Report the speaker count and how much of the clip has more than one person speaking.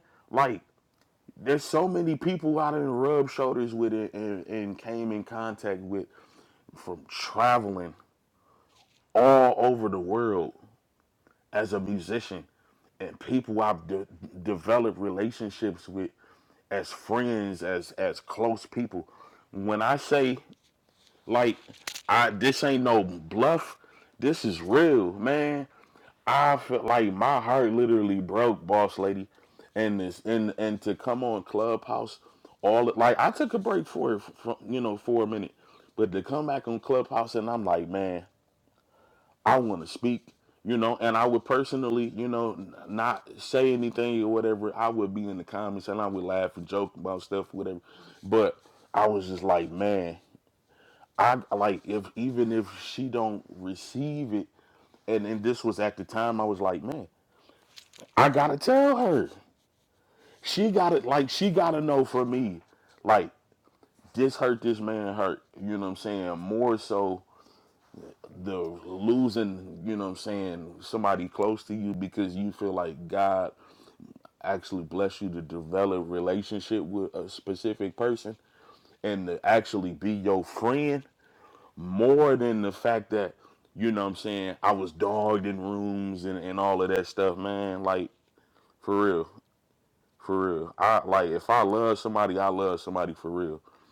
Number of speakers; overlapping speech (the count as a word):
one, no overlap